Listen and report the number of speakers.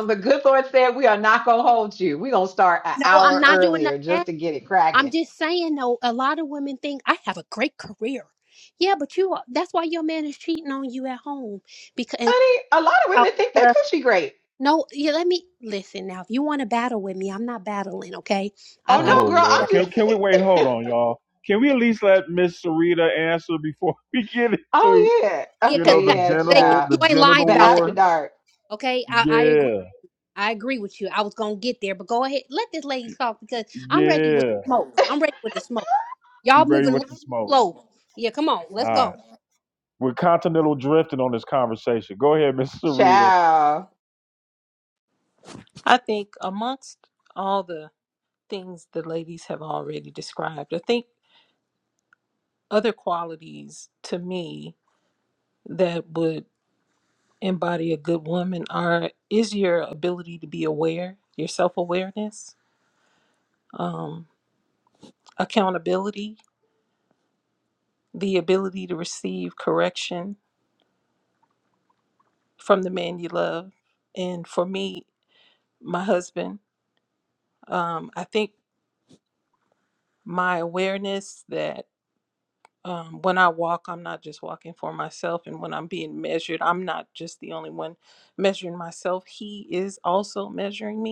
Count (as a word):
four